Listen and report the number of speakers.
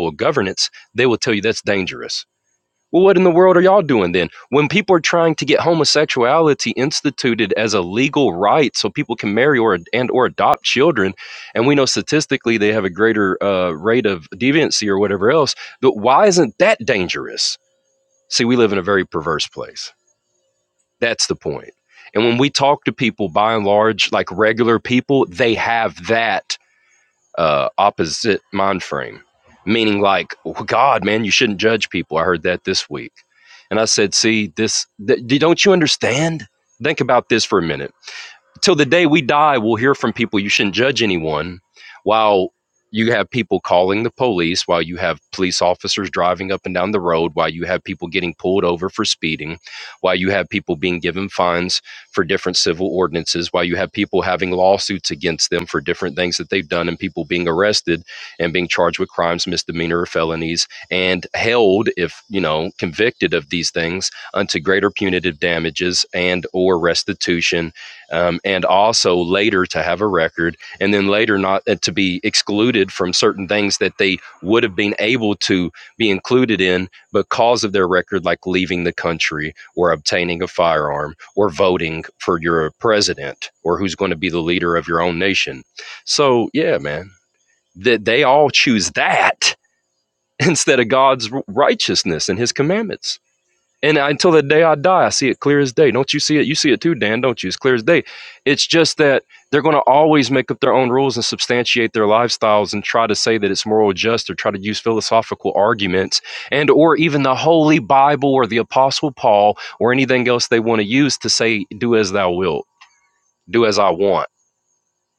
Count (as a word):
one